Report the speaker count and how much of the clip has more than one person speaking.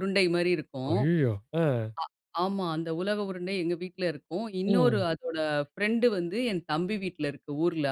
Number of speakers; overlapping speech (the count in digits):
2, about 6%